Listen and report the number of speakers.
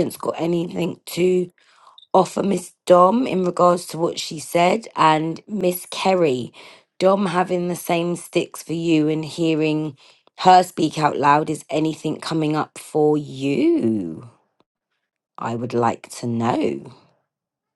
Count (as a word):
one